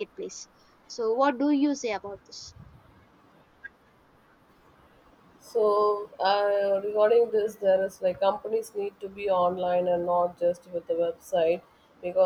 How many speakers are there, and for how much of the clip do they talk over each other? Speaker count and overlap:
2, no overlap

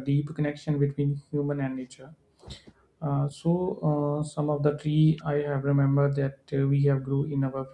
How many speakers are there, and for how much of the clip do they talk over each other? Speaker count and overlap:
1, no overlap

